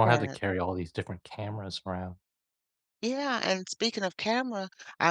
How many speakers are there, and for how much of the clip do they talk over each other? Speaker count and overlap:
2, about 6%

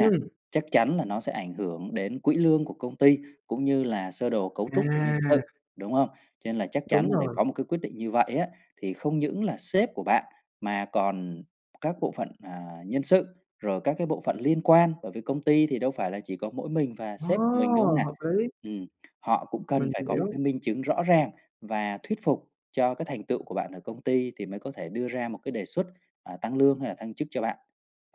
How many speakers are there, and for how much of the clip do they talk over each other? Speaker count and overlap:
2, about 10%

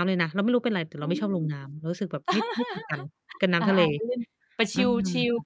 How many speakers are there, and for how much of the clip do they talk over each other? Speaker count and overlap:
2, about 12%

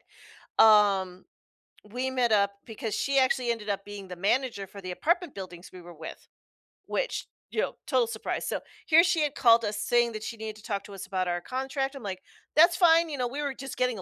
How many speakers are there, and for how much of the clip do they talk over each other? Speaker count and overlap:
1, no overlap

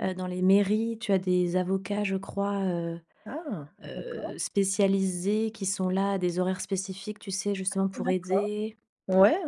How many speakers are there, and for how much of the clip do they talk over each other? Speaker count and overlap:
2, about 10%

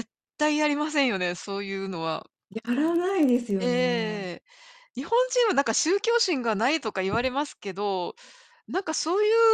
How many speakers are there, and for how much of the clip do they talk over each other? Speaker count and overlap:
2, about 7%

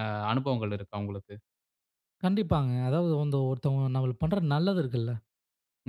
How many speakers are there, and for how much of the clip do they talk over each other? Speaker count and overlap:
2, no overlap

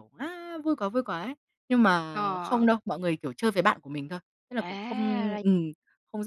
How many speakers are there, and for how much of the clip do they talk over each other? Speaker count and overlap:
2, about 16%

